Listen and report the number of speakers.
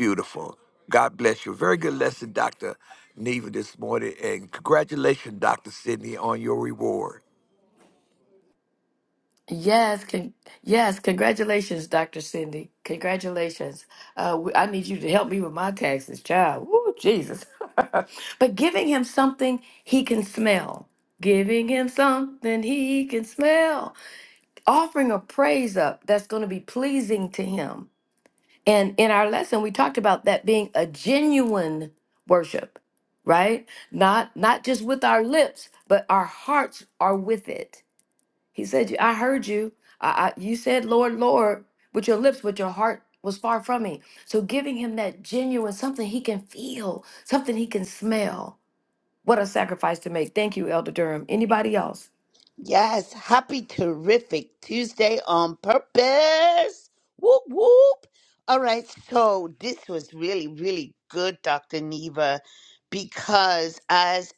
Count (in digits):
3